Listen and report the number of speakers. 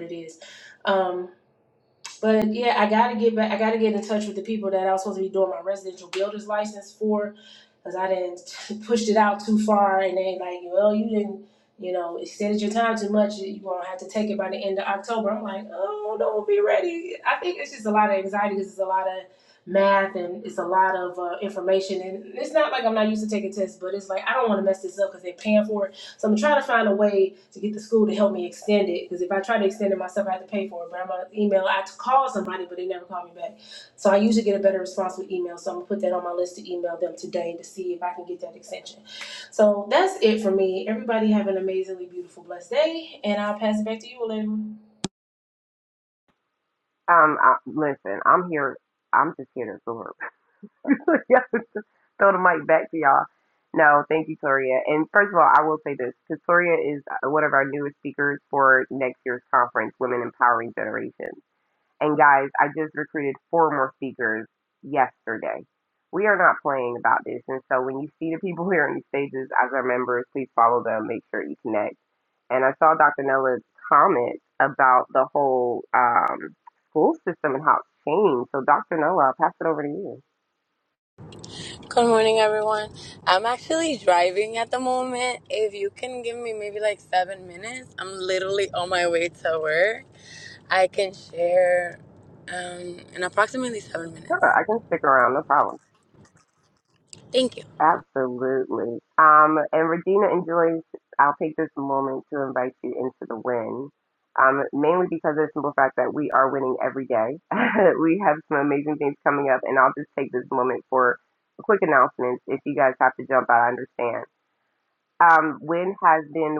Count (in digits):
3